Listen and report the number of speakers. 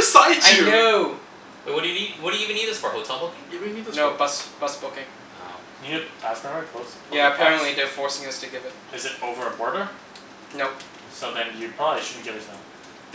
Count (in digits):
4